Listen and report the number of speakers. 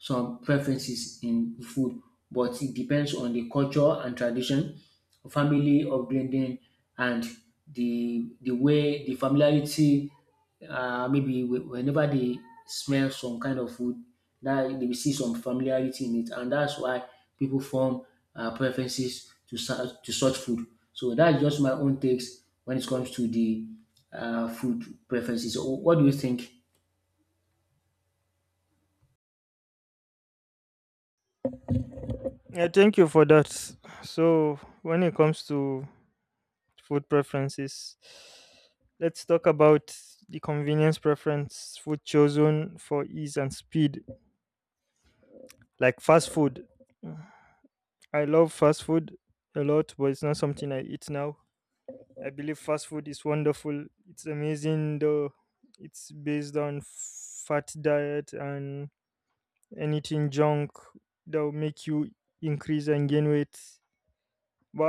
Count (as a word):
two